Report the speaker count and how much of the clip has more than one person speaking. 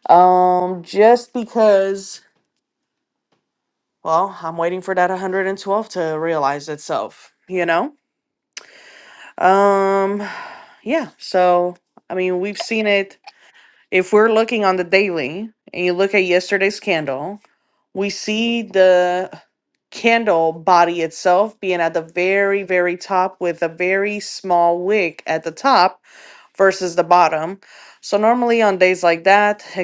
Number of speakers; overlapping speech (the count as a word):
one, no overlap